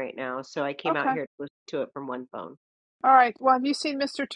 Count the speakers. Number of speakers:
2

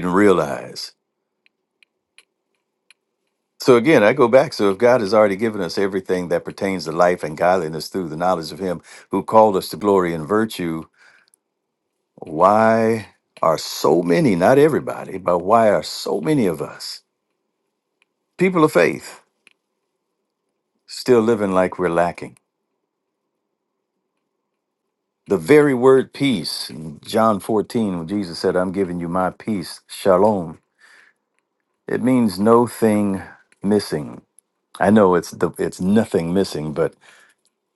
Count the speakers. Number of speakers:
1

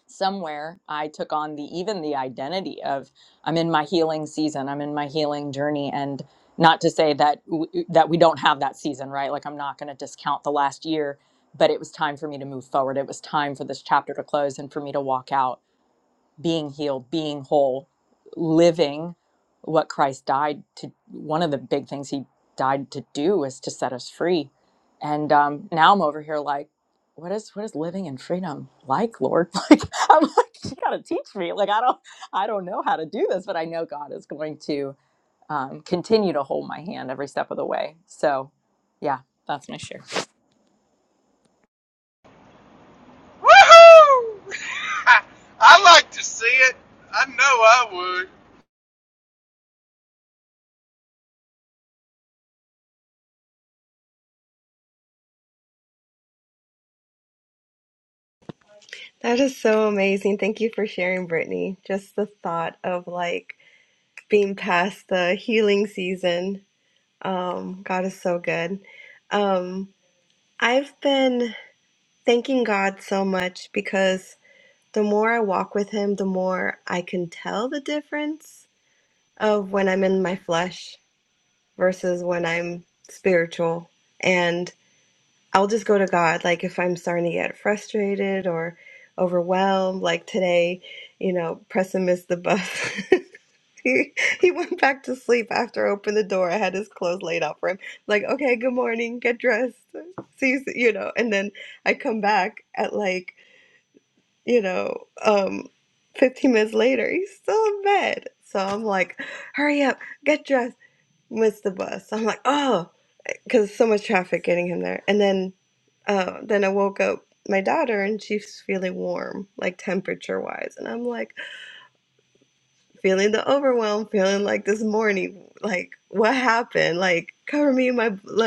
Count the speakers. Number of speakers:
3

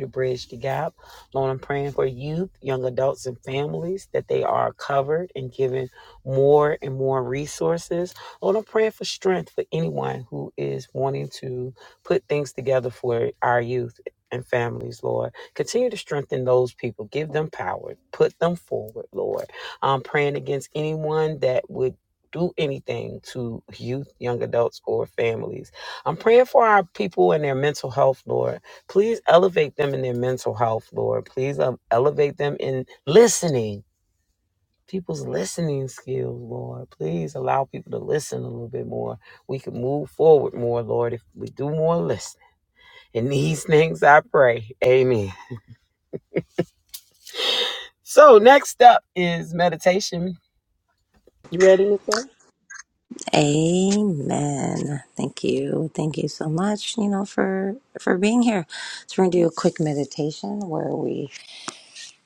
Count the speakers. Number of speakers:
2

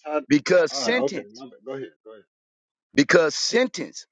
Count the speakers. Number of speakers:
2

